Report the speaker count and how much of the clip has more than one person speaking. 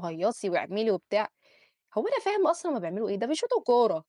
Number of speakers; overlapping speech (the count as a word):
one, no overlap